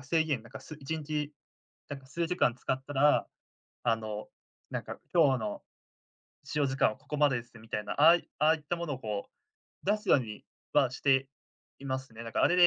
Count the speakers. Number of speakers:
one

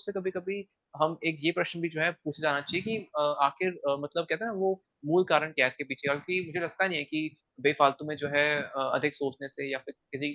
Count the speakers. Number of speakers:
one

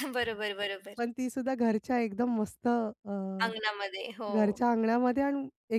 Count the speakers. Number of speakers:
two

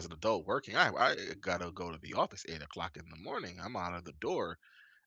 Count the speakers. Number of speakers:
one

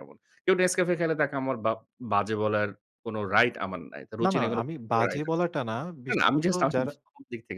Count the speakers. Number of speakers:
two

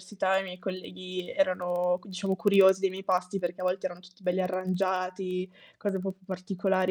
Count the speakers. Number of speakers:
one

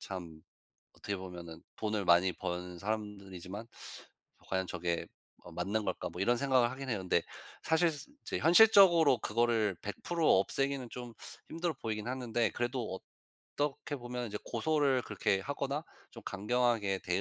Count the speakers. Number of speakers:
one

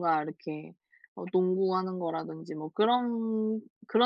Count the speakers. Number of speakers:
one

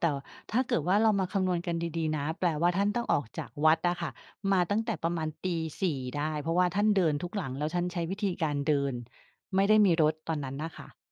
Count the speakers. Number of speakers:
one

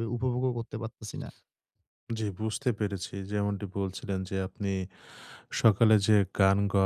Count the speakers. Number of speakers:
two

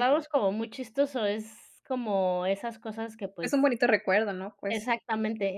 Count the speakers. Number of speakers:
two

